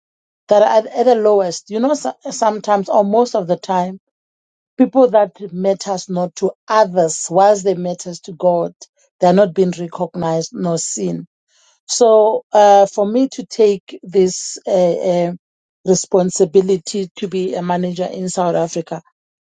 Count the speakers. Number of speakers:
1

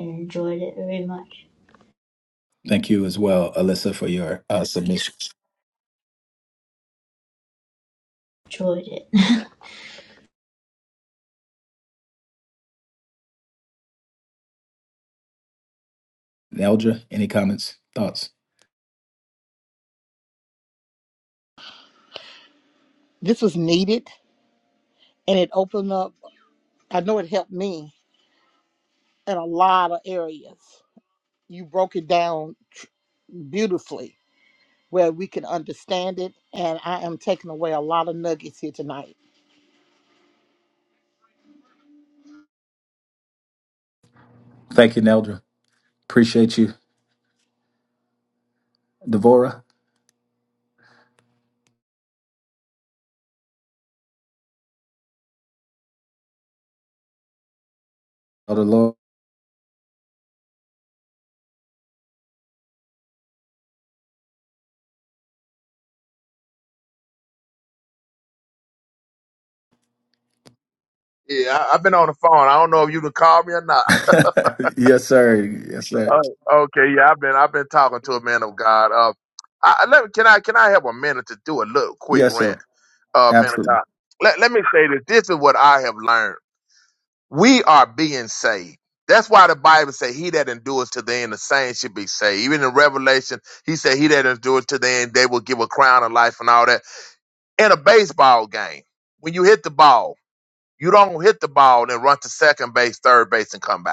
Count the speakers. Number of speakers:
4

